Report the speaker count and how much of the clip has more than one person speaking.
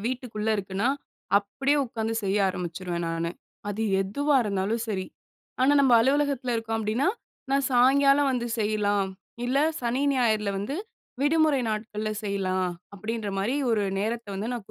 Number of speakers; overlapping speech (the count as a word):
one, no overlap